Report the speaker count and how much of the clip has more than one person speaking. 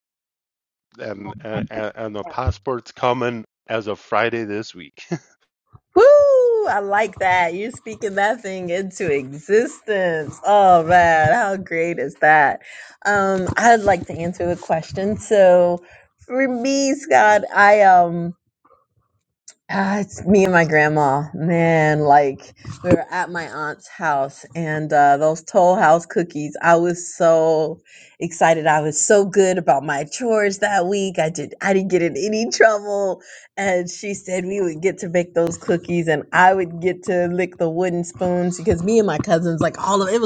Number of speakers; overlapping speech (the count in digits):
2, no overlap